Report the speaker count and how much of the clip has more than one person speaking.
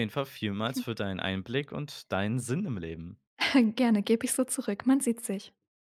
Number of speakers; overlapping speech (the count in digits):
2, no overlap